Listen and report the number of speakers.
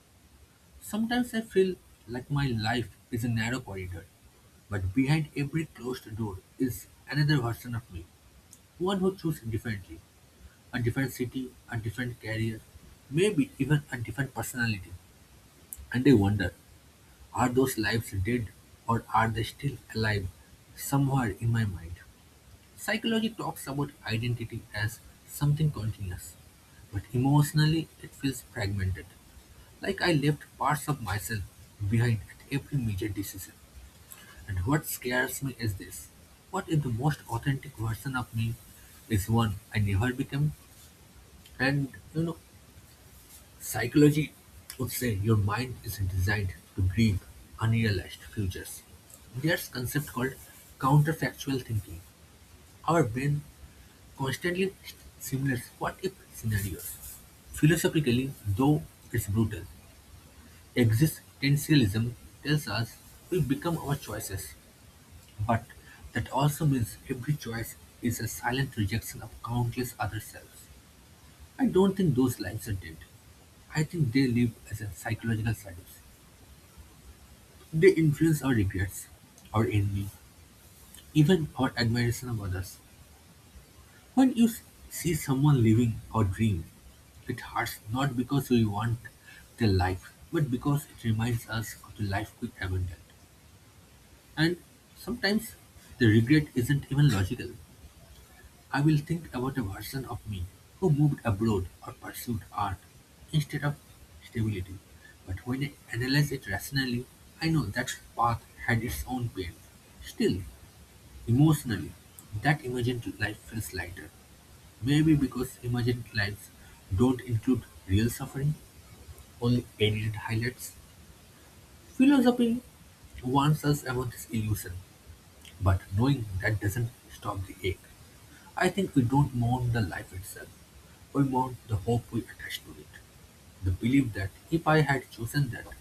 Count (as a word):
one